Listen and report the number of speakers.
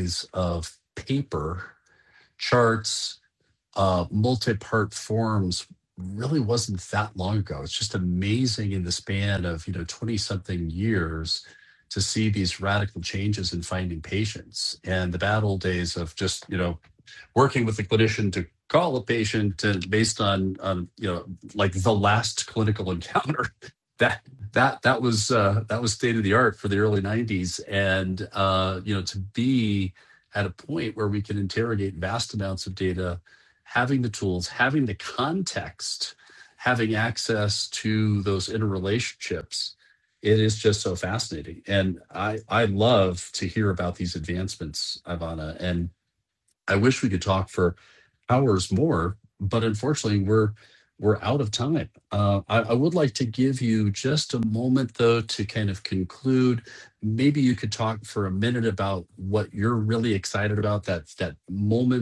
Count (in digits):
1